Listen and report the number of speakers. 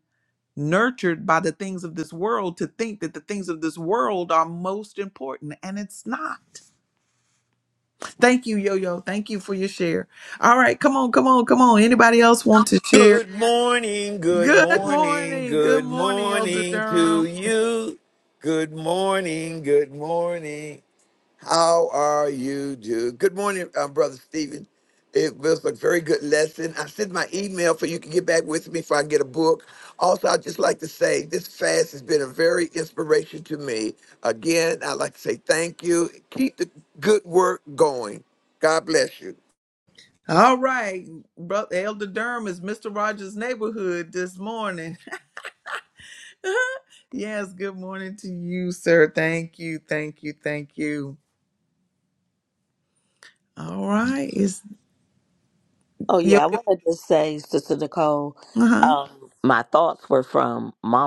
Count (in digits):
3